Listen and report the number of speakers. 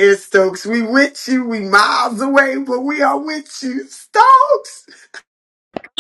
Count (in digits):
1